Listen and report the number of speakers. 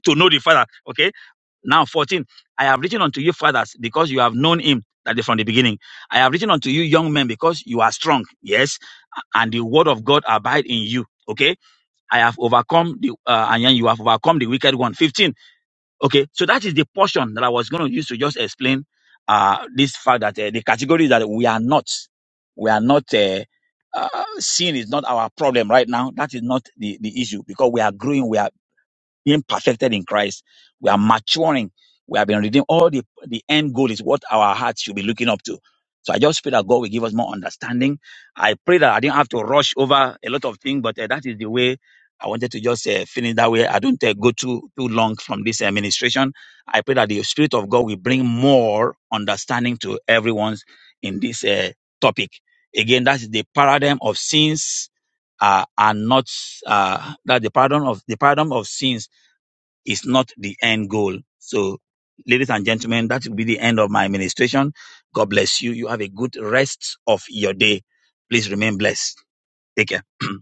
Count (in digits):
1